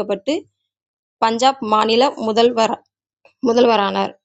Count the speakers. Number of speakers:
1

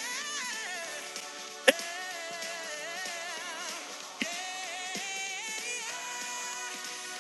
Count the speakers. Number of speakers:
0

